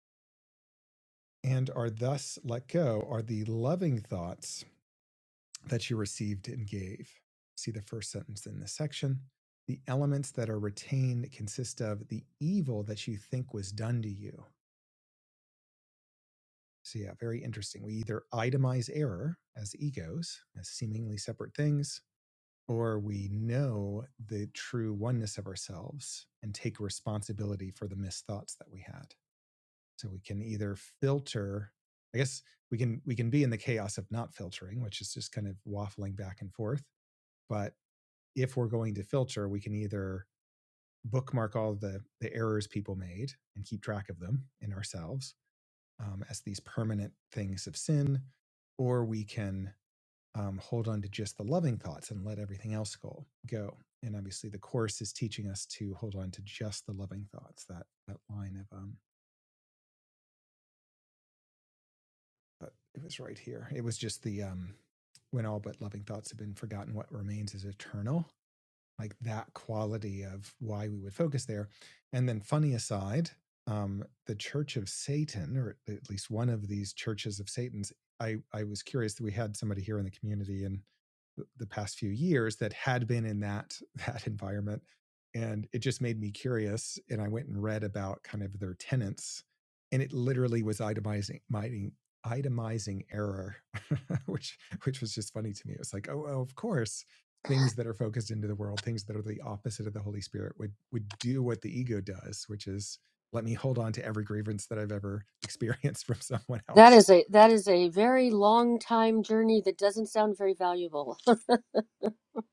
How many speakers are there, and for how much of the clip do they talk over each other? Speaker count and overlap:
2, under 1%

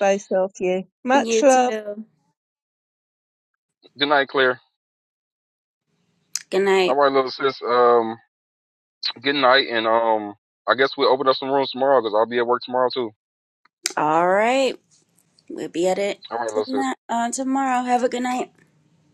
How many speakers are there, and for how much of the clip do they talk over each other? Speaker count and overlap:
3, about 4%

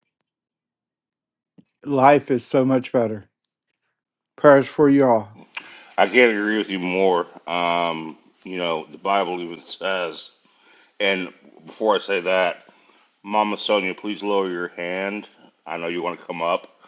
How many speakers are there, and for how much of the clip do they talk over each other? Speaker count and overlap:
2, no overlap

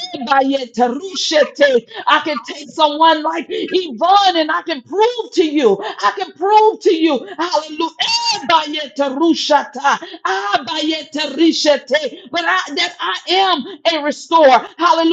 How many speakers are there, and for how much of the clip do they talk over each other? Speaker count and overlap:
1, no overlap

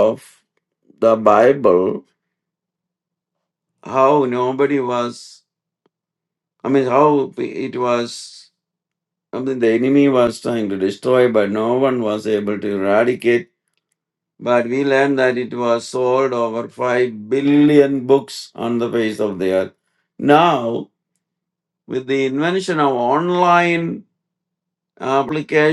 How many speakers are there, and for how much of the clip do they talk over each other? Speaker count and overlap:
1, no overlap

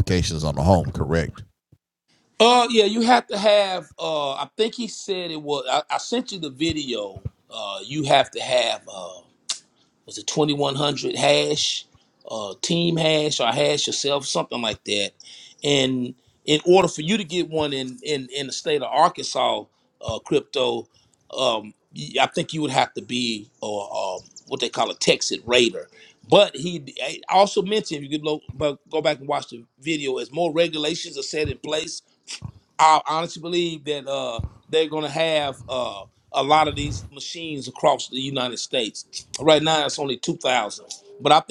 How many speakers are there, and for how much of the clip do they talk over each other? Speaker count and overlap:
2, no overlap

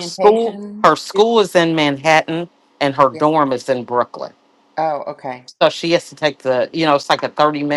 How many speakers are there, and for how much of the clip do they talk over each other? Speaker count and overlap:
2, about 18%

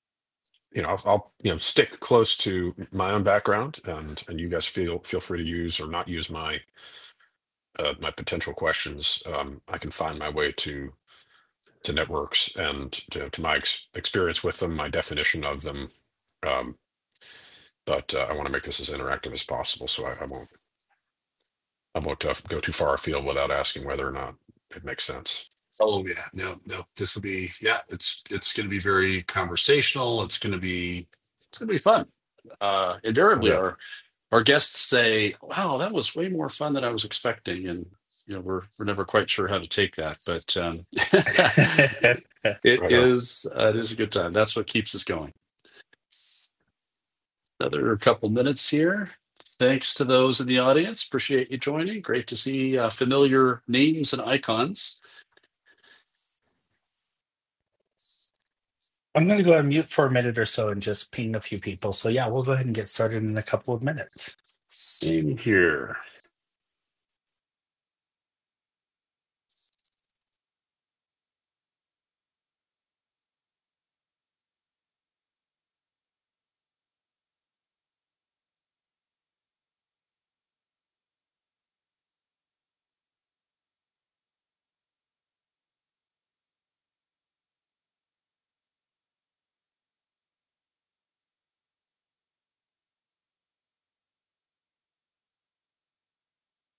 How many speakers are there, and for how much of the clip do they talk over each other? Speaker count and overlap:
3, about 1%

